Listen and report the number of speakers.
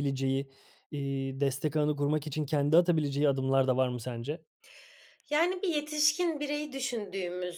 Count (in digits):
2